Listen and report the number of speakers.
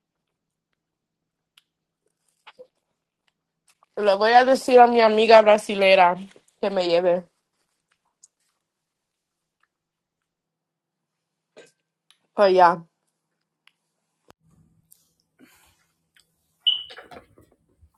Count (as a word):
one